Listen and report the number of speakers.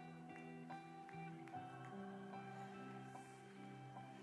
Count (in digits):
0